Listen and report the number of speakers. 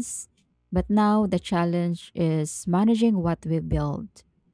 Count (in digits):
1